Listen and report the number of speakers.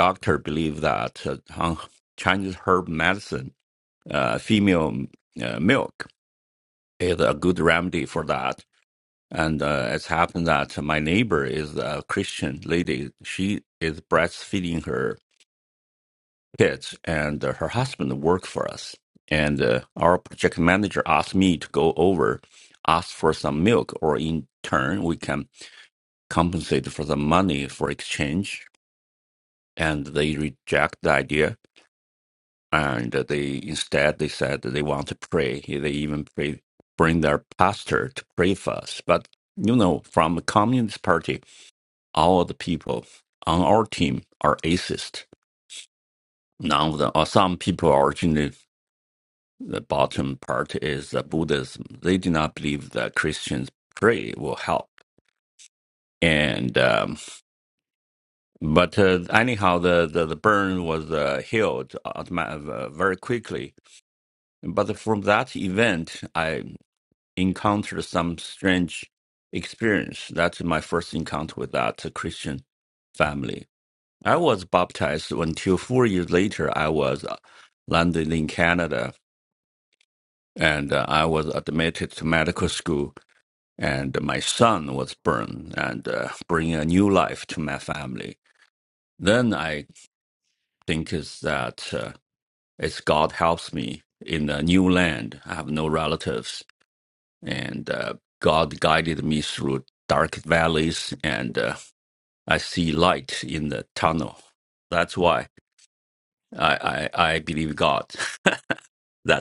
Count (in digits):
1